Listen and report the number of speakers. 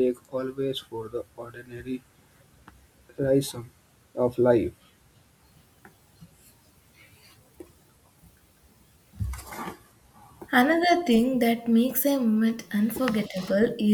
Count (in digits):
2